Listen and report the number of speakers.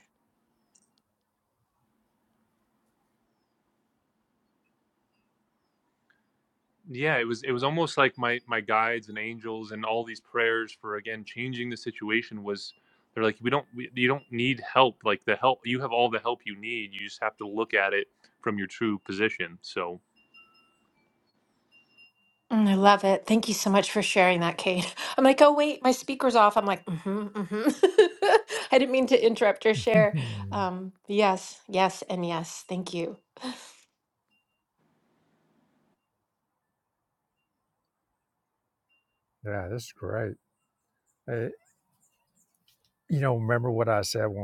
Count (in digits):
3